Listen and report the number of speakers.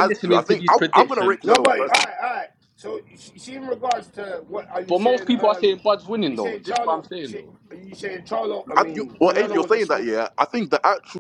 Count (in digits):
3